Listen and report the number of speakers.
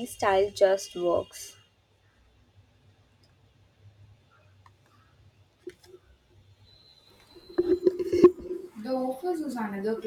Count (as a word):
two